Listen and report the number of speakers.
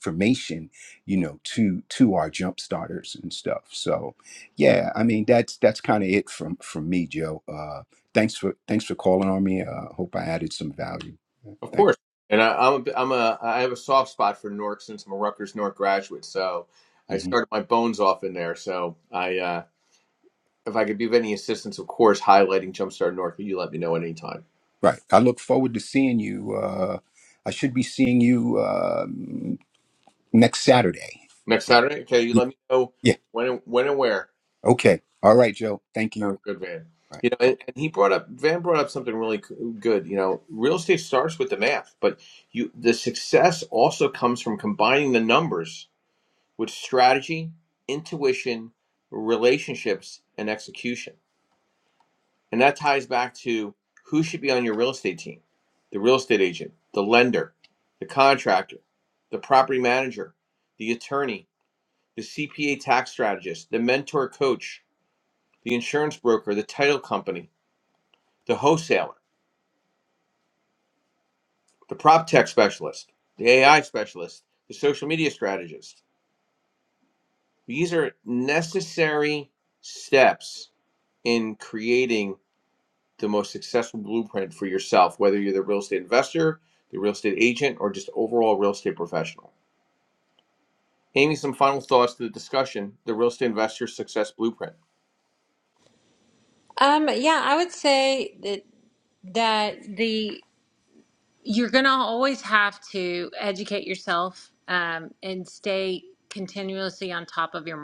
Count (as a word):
three